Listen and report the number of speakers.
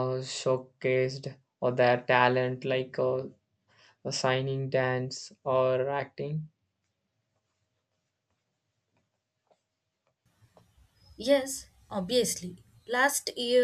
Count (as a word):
two